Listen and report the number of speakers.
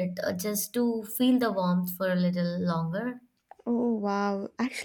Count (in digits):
2